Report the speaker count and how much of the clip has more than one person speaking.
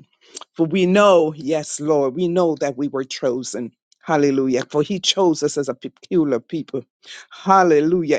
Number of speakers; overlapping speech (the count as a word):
one, no overlap